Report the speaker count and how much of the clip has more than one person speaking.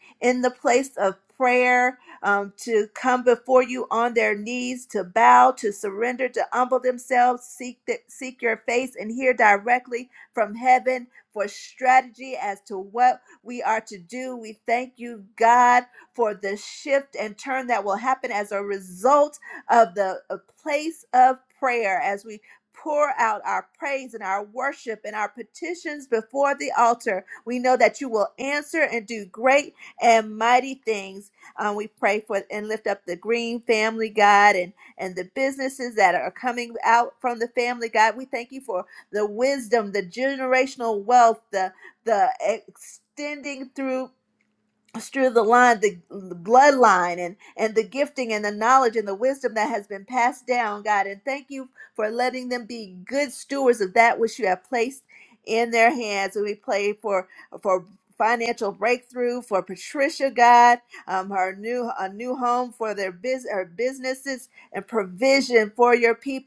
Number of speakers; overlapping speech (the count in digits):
1, no overlap